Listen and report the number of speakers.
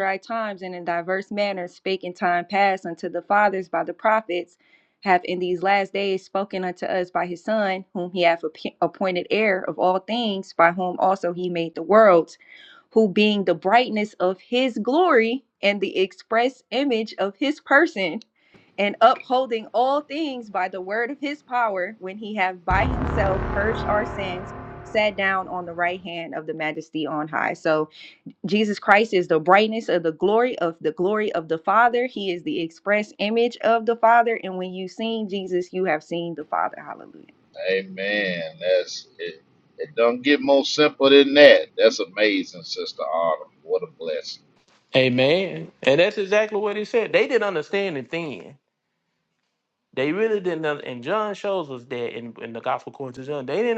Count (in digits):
3